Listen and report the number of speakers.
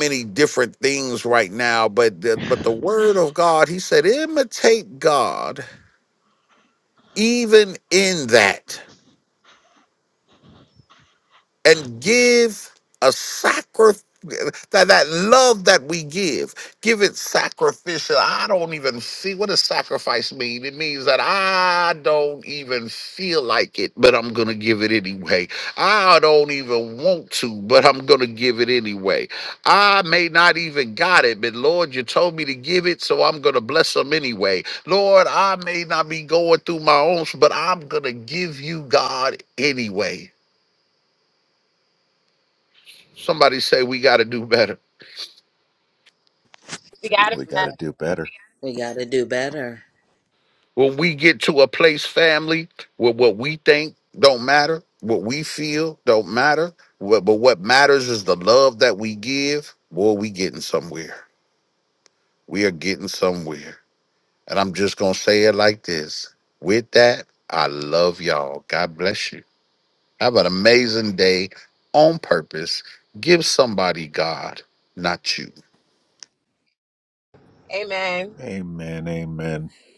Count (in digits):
4